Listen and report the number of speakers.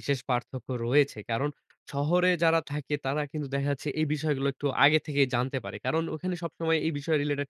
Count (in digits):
1